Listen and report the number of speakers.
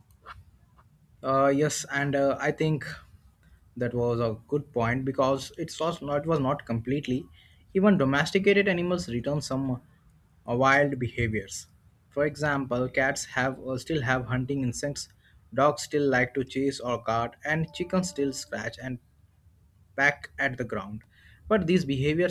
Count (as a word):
one